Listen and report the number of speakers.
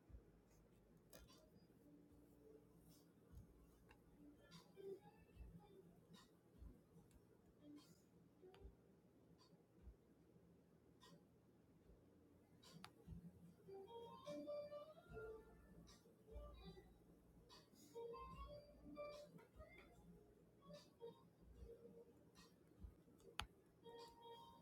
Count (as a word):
zero